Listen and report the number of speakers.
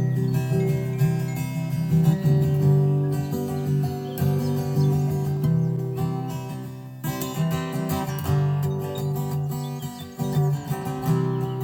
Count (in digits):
0